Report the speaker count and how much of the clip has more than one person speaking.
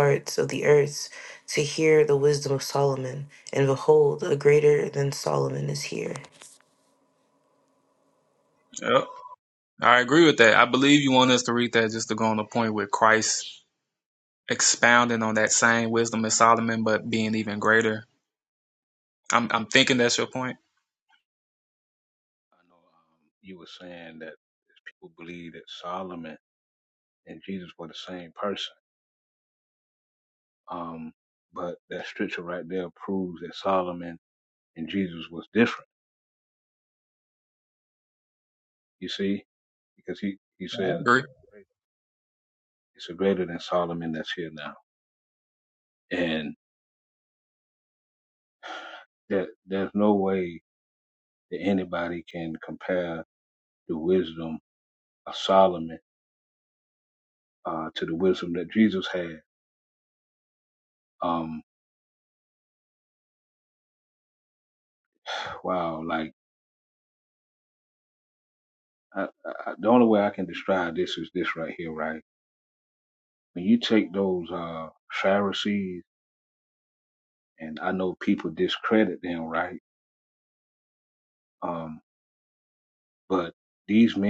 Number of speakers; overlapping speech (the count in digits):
3, under 1%